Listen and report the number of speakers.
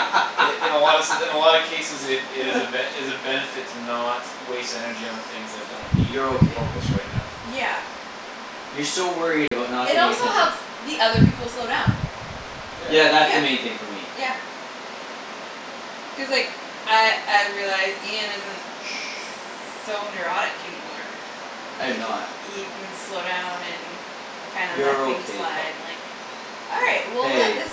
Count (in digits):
3